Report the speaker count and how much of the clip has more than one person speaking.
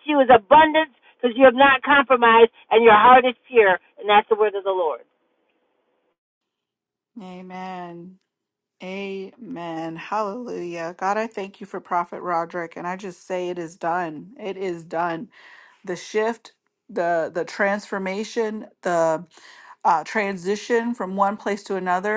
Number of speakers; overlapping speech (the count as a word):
two, no overlap